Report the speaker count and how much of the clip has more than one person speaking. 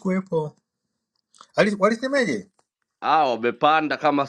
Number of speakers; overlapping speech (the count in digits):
2, no overlap